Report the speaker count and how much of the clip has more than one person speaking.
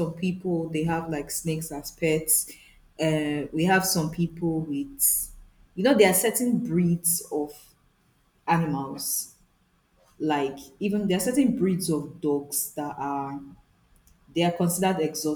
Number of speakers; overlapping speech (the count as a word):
one, no overlap